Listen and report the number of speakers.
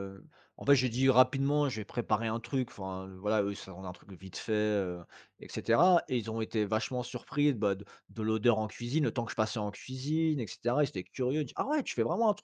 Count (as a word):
one